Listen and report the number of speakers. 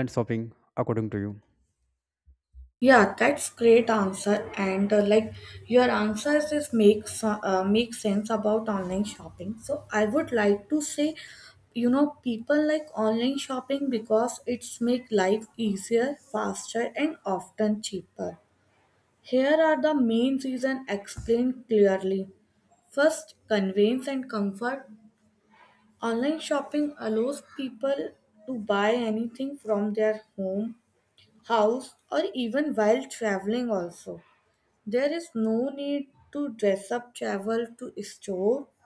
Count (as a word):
two